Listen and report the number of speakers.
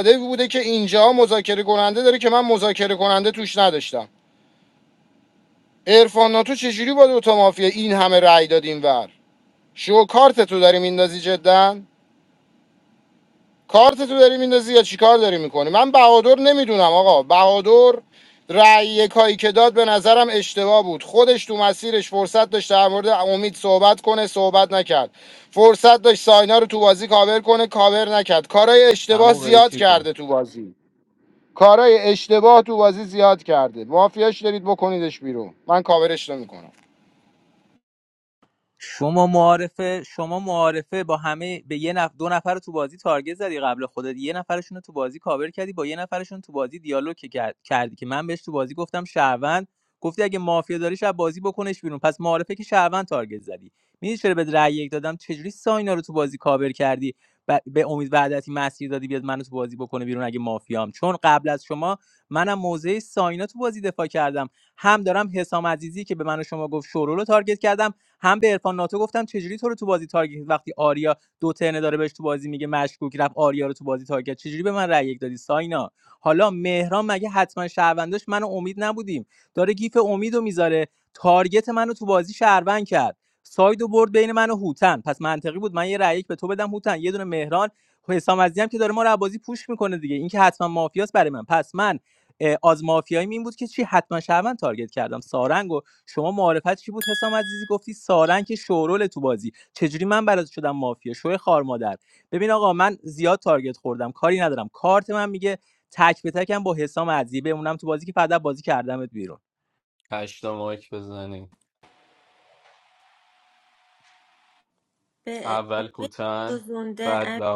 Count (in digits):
4